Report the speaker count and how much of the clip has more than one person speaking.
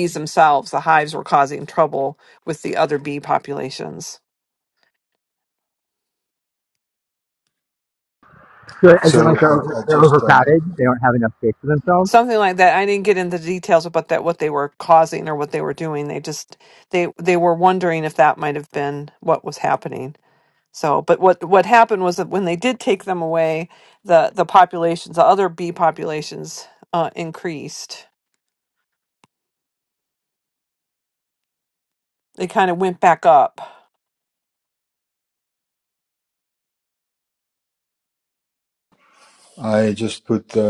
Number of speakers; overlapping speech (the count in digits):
3, about 4%